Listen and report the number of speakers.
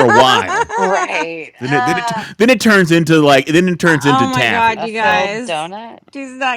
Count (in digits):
3